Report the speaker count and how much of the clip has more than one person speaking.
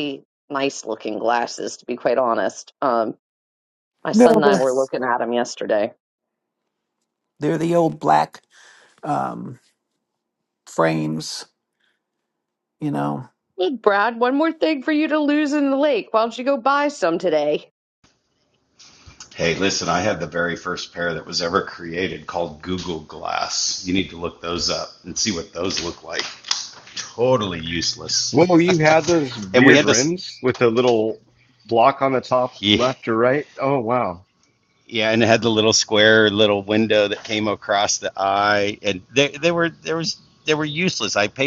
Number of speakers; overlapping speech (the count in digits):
4, about 4%